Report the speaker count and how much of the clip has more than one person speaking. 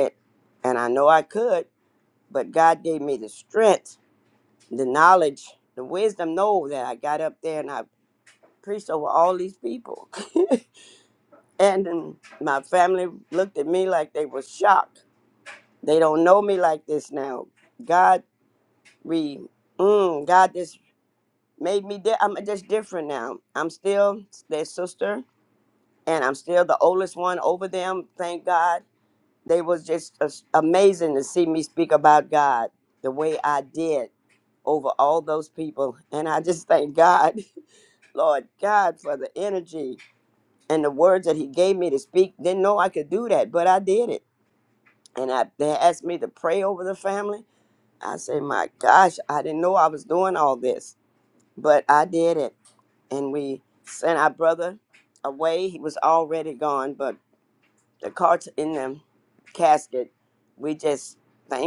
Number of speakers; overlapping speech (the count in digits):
1, no overlap